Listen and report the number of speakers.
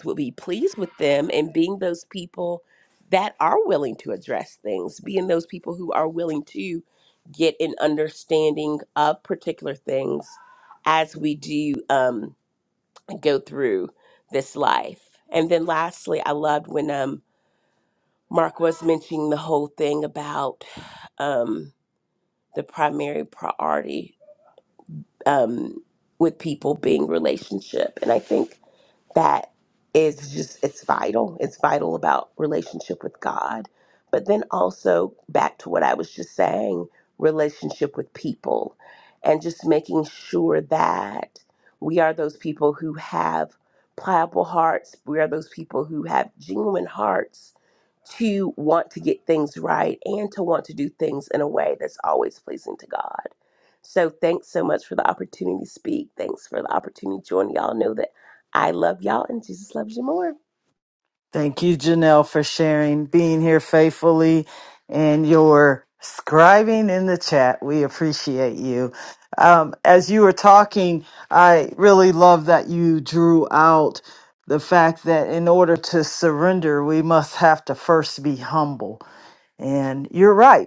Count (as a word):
two